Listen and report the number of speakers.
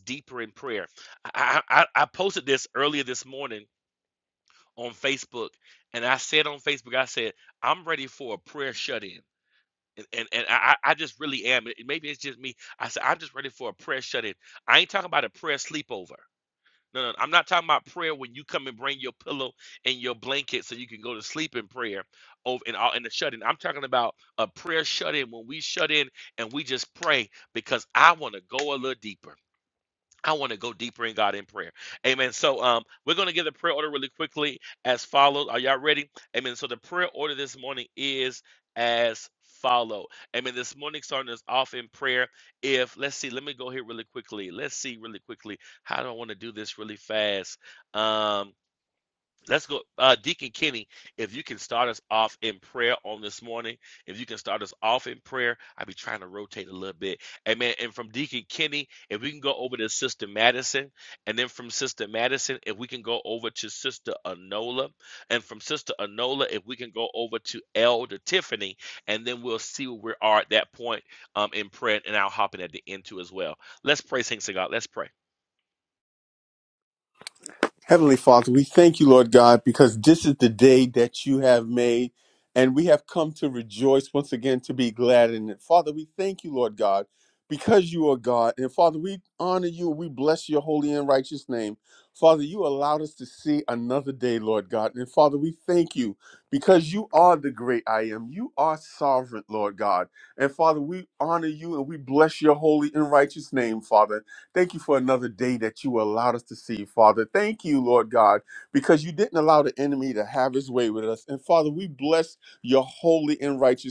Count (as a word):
two